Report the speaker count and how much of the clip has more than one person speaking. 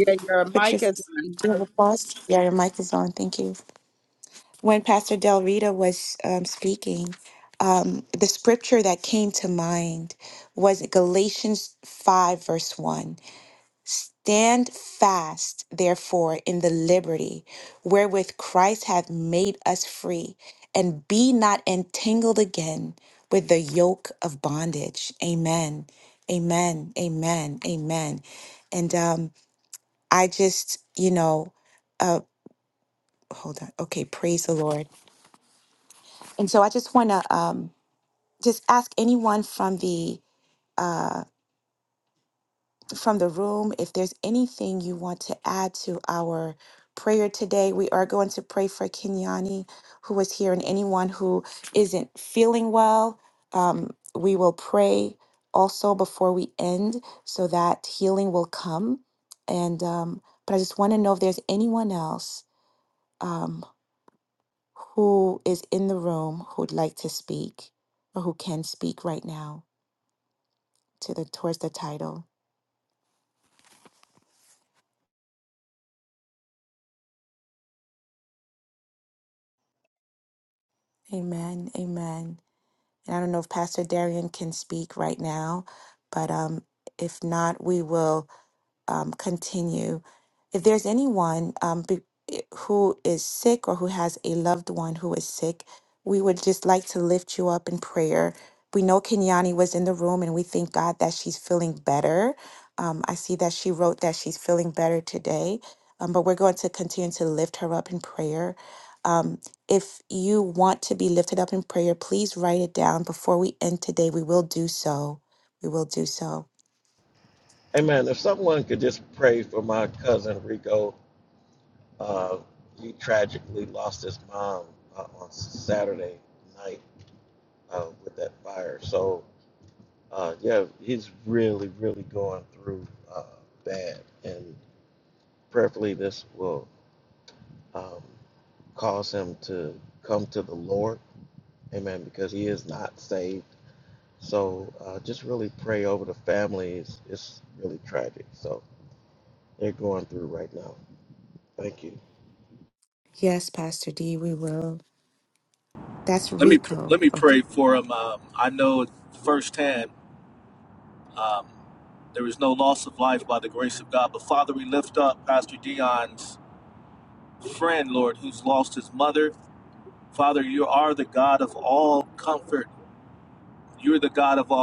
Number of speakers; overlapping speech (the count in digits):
4, about 1%